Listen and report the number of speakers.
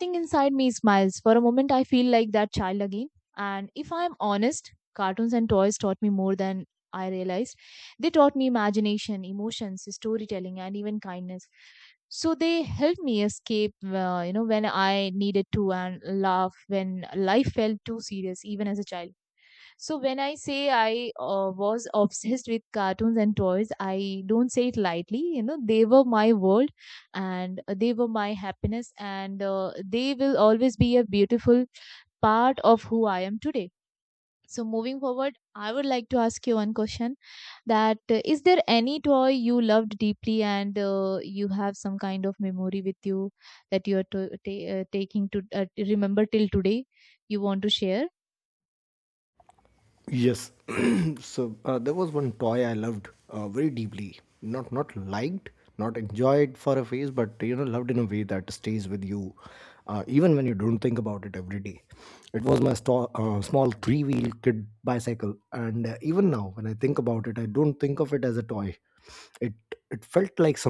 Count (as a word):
two